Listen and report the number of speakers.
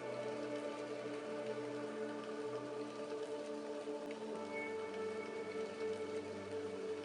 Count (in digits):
0